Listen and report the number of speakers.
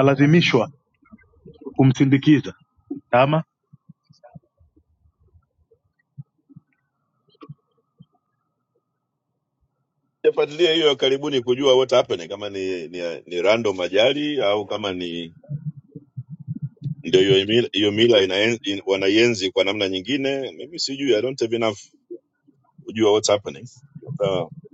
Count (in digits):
2